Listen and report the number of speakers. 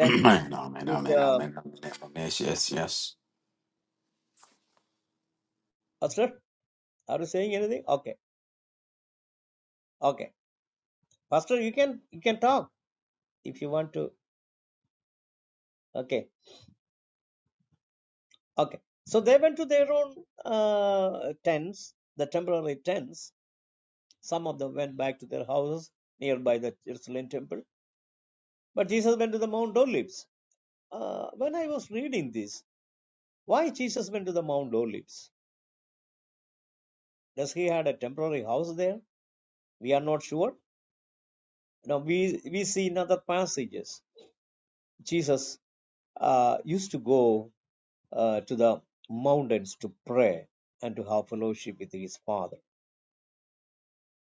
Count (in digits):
2